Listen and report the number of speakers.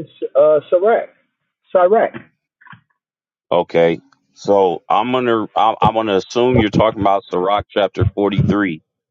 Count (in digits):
2